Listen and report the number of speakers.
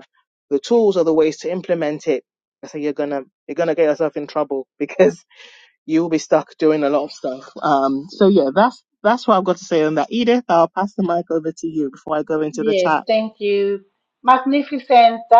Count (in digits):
2